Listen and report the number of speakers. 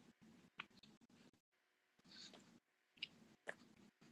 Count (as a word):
zero